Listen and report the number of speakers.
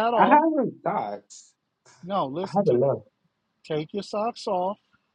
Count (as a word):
two